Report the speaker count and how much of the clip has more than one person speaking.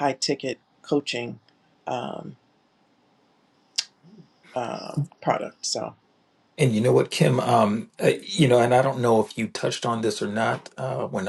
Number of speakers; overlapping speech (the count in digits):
2, no overlap